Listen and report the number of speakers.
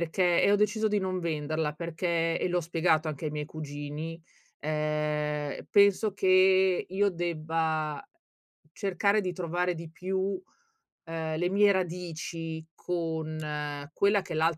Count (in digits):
1